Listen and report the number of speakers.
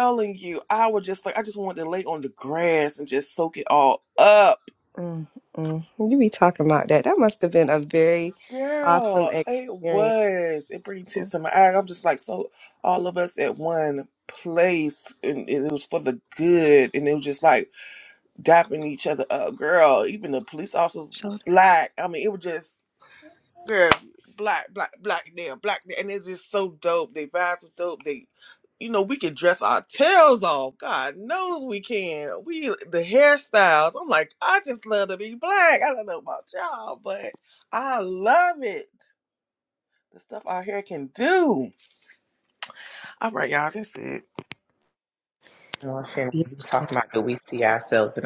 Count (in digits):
3